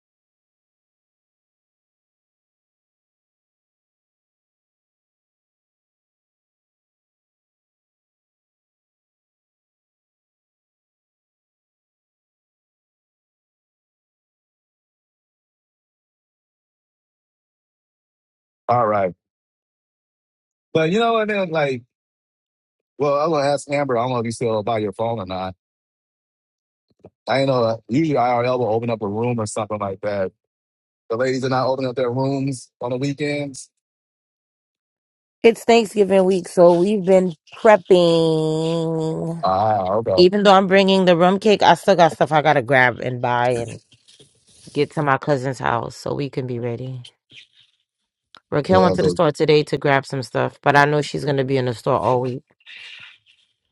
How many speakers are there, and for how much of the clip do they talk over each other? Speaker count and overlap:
two, about 1%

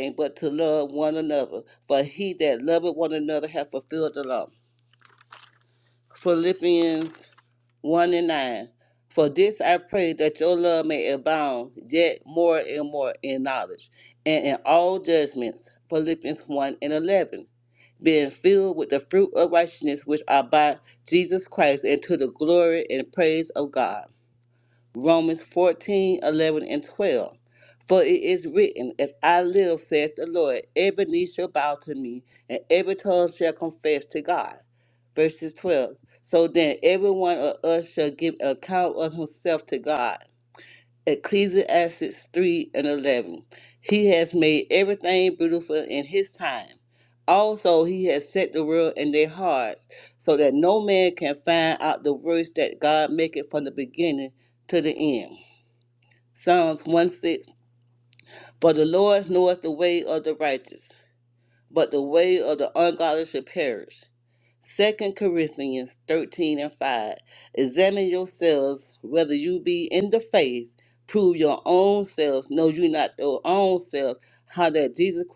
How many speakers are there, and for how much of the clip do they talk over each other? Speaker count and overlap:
one, no overlap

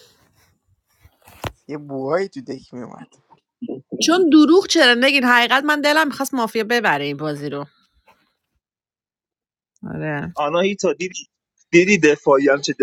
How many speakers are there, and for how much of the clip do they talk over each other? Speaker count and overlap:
three, no overlap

